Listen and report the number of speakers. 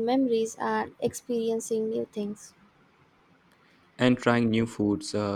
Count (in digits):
2